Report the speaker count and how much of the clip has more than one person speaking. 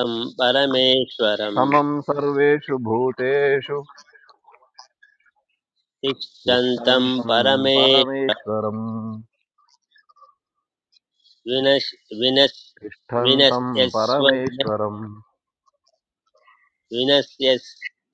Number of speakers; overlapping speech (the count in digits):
2, about 14%